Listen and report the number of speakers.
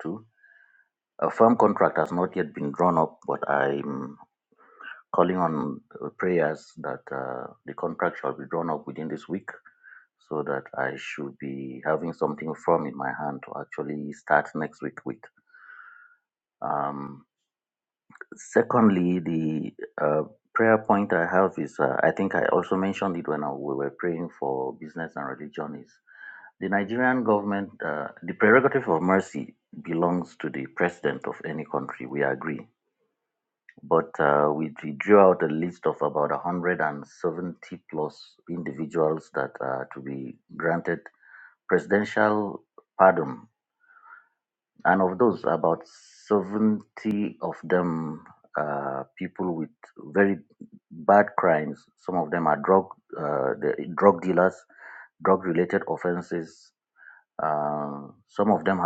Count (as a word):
one